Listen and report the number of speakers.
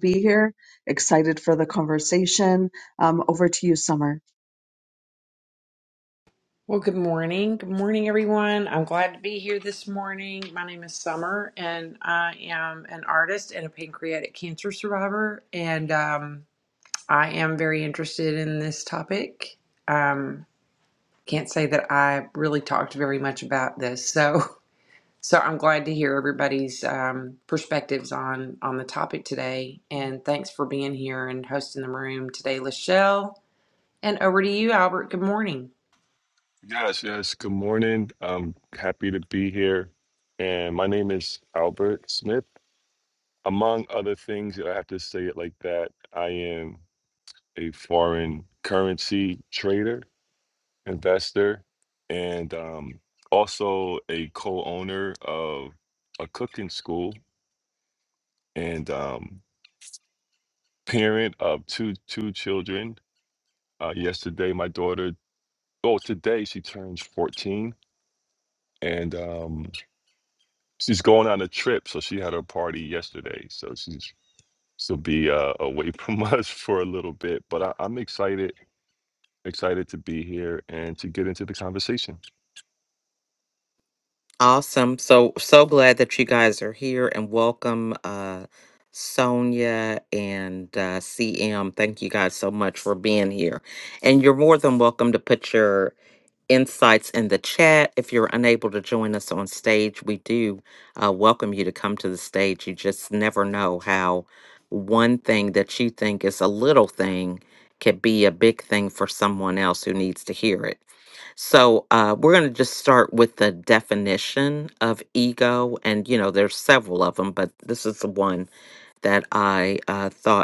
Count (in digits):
4